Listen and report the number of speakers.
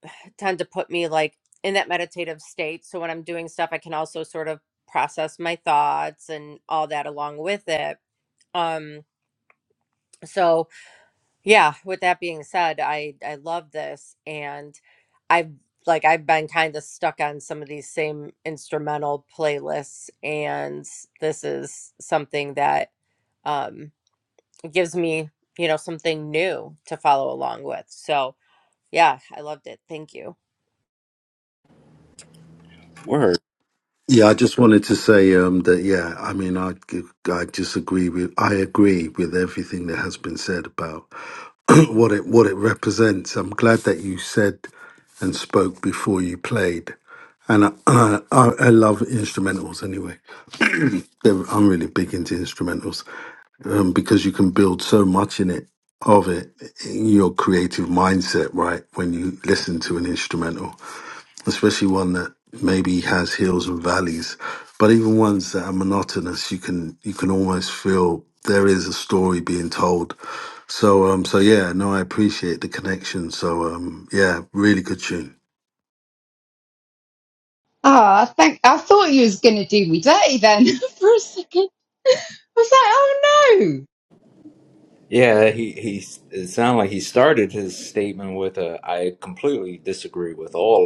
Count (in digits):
4